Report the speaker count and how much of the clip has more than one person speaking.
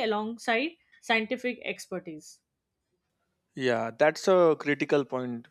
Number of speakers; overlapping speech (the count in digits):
2, no overlap